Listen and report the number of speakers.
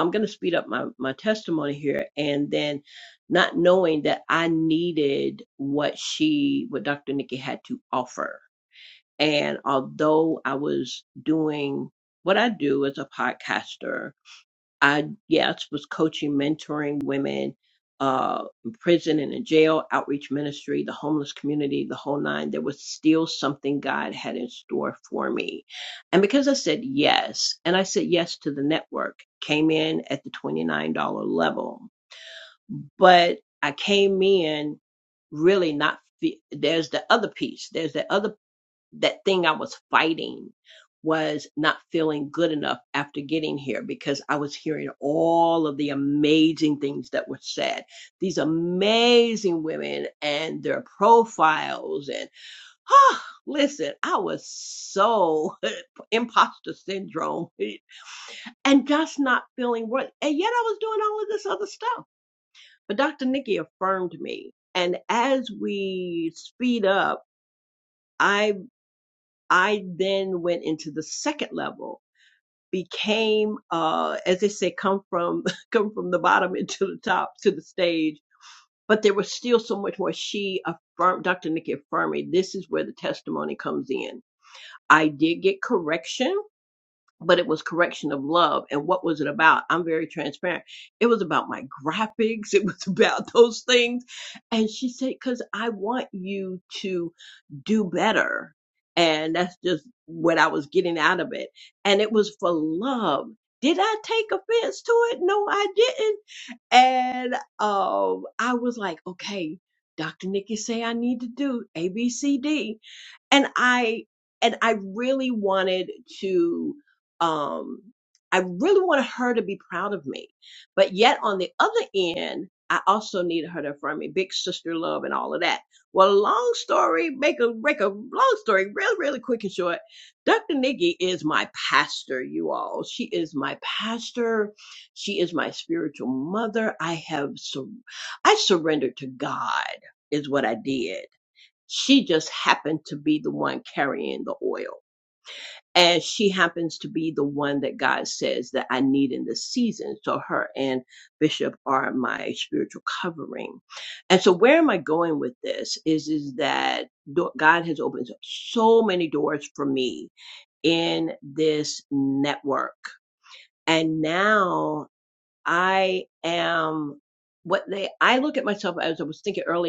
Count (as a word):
one